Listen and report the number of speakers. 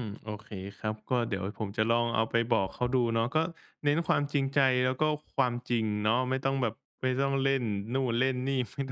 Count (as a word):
one